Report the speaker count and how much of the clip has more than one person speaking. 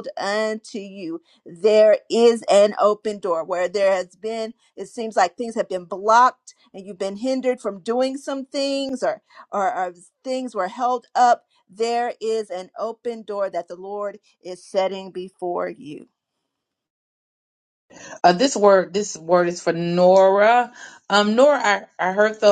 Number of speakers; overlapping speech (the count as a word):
two, no overlap